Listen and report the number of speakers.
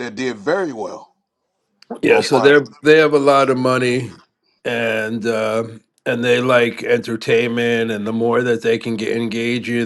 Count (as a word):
two